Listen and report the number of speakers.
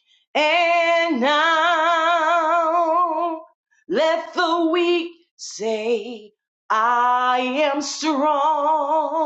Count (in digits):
1